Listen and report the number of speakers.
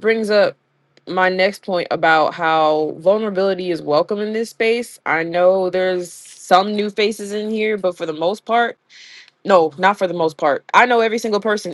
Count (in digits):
1